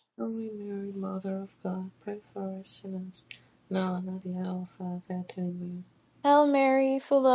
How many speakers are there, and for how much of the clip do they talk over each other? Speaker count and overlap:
2, no overlap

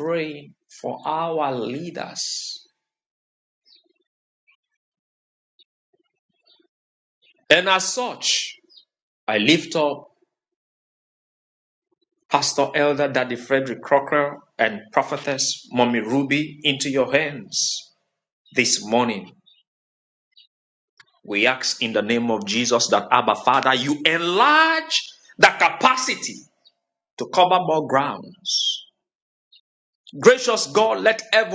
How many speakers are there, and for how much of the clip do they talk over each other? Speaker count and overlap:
1, no overlap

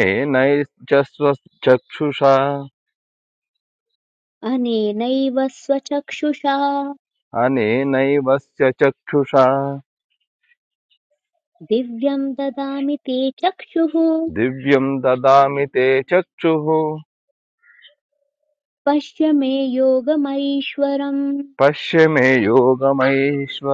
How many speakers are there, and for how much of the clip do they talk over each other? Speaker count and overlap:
2, no overlap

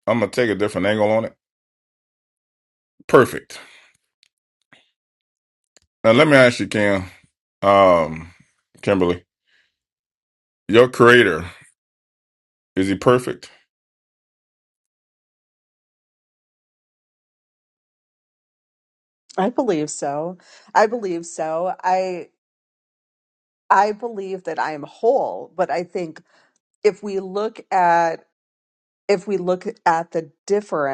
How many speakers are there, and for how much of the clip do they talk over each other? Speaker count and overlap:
2, no overlap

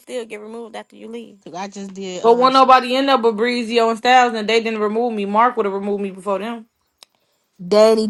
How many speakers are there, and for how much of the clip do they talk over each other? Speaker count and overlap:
3, about 3%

